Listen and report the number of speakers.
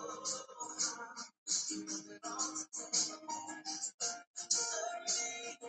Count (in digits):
0